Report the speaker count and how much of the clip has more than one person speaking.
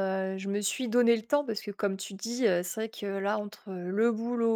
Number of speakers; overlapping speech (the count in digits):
1, no overlap